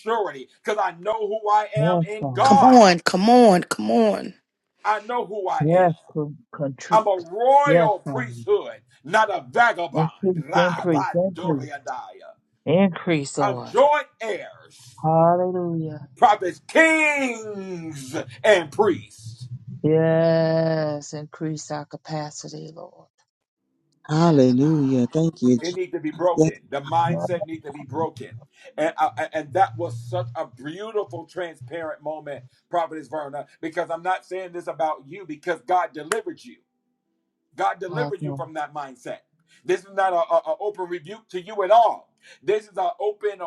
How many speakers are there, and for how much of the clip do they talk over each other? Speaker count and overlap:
4, about 12%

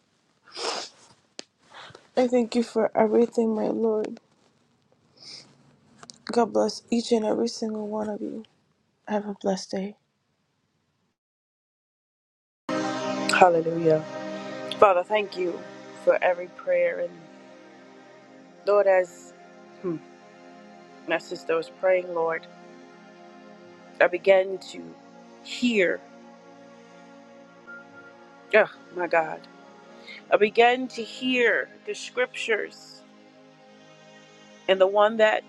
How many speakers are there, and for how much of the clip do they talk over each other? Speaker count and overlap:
2, no overlap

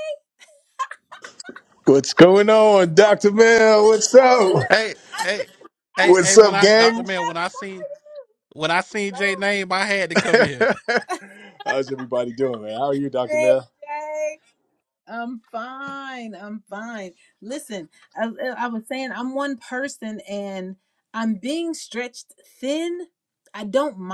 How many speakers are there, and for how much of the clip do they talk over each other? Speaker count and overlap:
3, about 12%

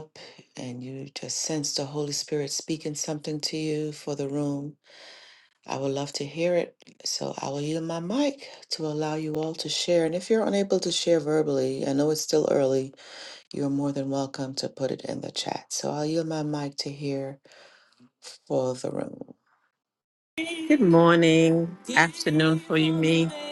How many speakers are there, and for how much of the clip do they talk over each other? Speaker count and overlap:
2, no overlap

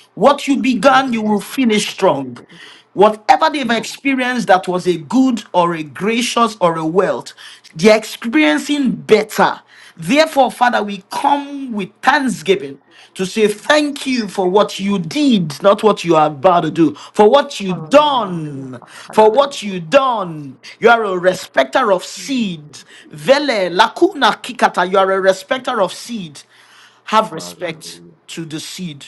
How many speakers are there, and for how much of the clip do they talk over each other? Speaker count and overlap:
1, no overlap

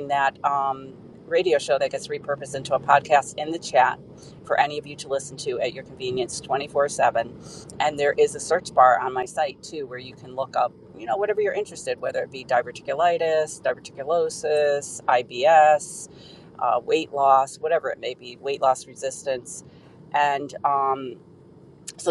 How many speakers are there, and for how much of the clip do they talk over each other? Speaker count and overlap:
1, no overlap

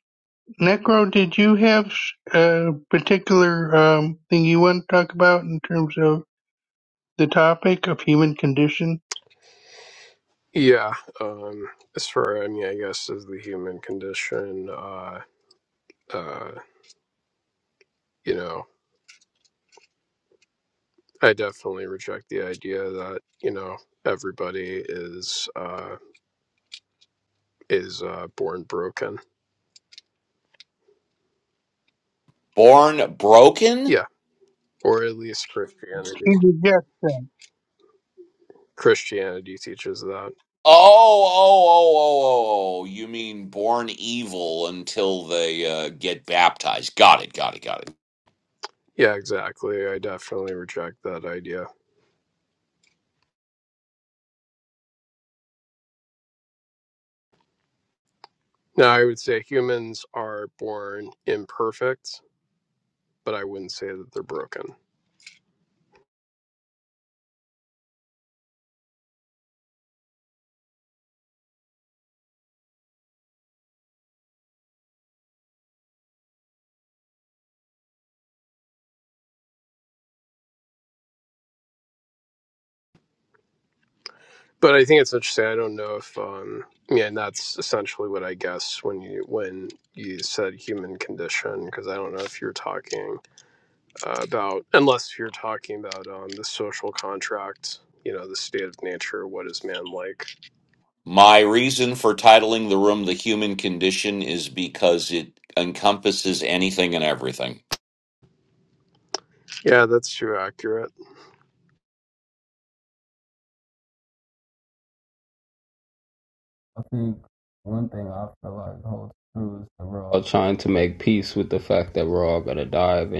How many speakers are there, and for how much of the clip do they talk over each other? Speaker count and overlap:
4, under 1%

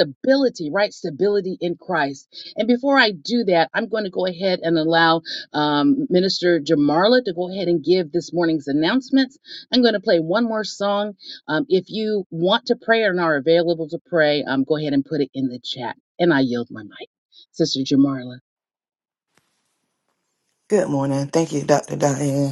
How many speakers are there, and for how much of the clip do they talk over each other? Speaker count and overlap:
2, no overlap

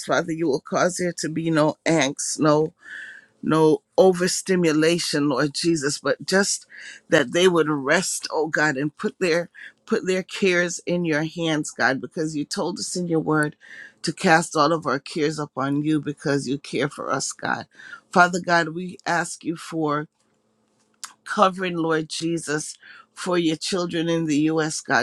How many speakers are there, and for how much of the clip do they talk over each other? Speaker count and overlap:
1, no overlap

